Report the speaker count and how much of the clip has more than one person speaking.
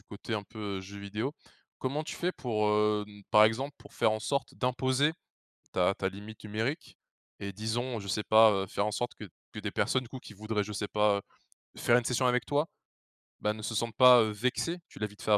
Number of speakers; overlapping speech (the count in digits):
1, no overlap